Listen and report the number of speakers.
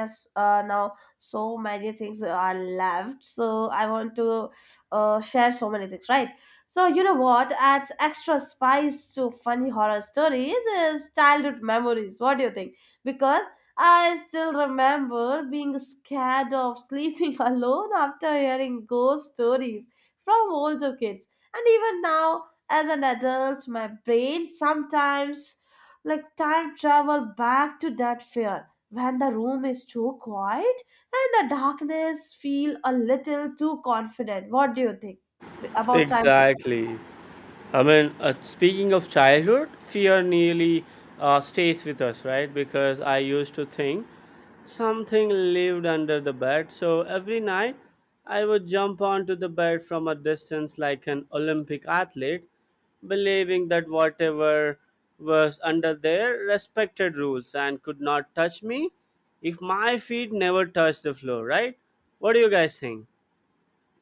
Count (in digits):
2